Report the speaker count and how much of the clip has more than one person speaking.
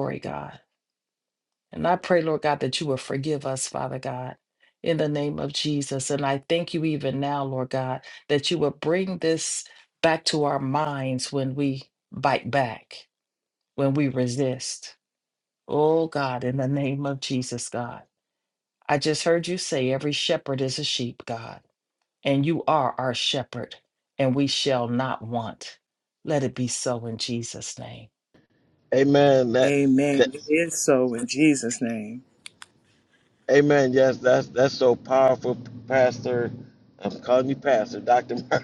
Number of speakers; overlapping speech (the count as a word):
three, about 1%